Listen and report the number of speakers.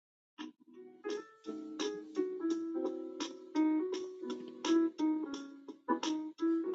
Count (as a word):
zero